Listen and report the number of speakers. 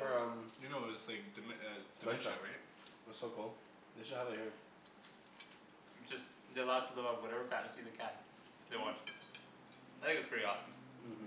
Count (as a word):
three